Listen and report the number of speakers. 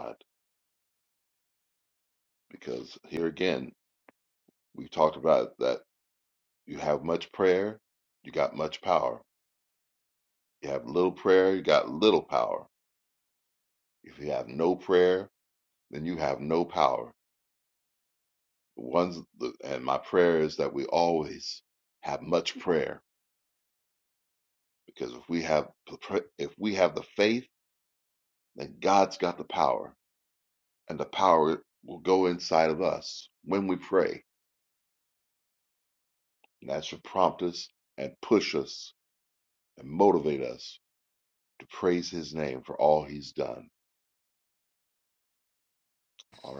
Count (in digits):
1